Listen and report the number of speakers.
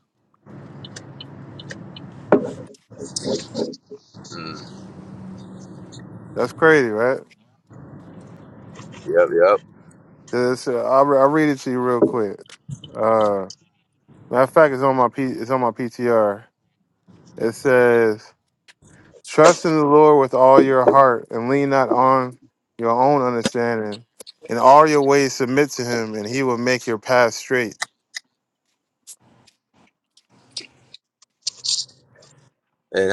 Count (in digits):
2